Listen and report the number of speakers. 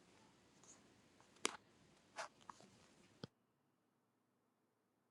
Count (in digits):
0